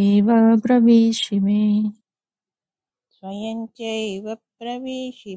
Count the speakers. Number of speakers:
2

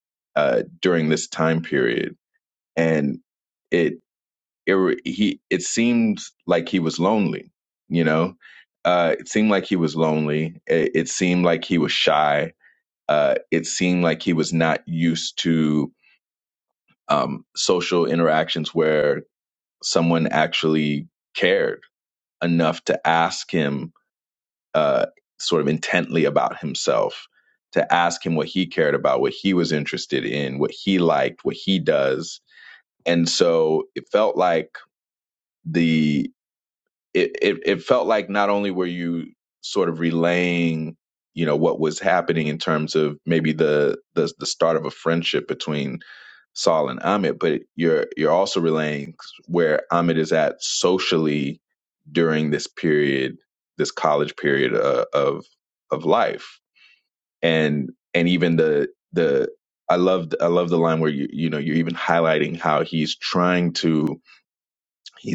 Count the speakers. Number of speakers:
1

